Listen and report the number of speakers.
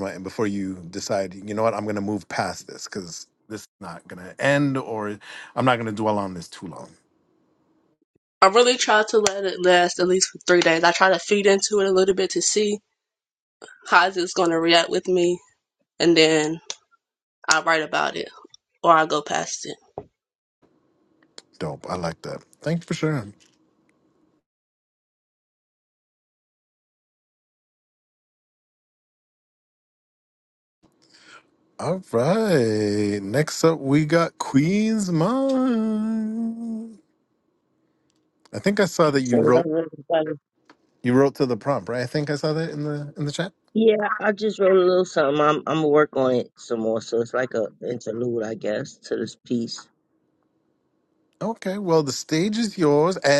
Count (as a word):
three